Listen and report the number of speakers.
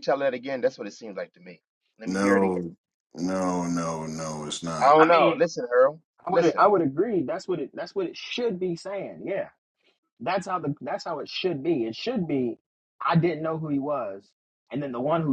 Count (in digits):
3